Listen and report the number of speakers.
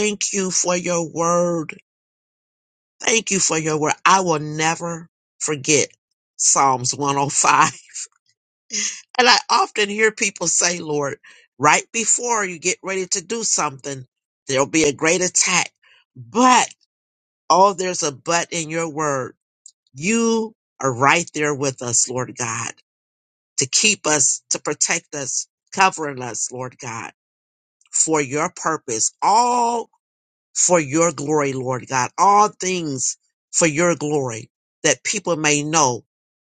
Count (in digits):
1